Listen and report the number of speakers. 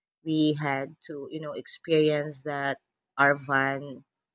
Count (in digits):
1